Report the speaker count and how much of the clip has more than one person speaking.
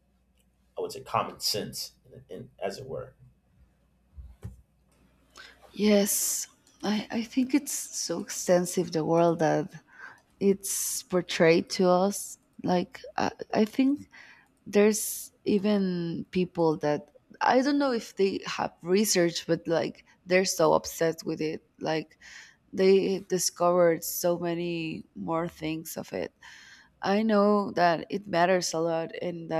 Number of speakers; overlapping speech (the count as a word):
two, no overlap